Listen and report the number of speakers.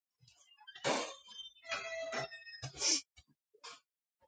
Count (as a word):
zero